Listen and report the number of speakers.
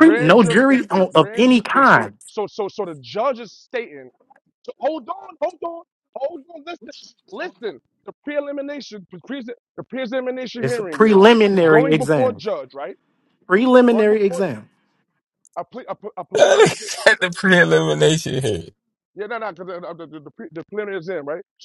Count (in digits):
3